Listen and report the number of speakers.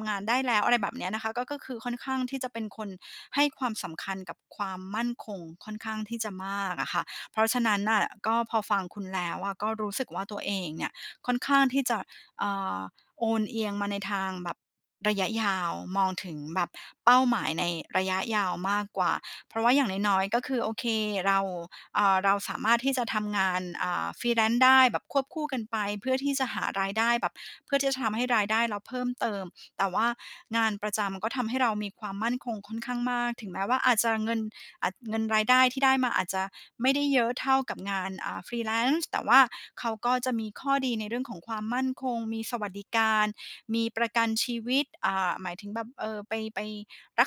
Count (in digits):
1